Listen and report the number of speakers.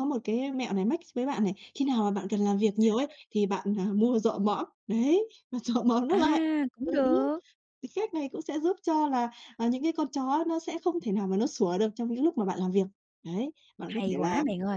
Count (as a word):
two